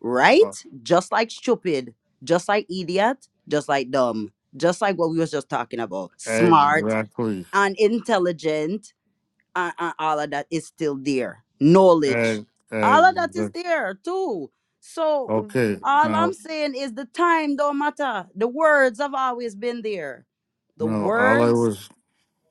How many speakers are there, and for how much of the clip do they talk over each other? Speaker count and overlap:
two, about 14%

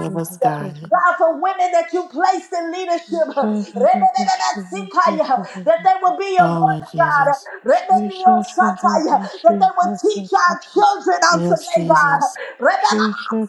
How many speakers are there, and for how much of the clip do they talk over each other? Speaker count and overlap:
three, about 43%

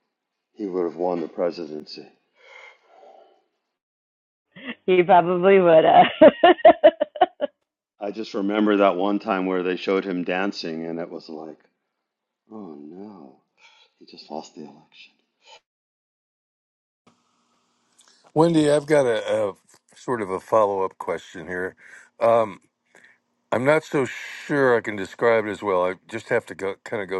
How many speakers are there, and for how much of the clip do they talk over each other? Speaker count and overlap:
three, no overlap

